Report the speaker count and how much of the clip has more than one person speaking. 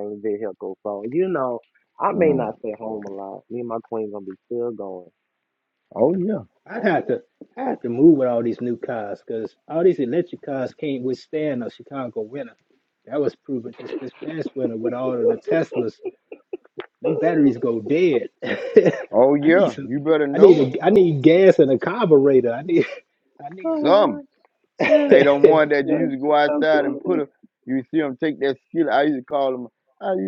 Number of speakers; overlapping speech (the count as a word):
three, about 9%